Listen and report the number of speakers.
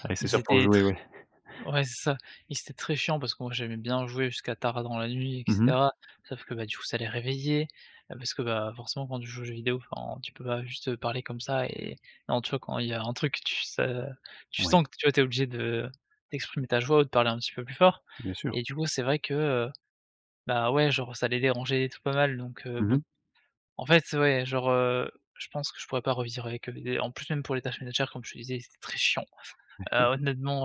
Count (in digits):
2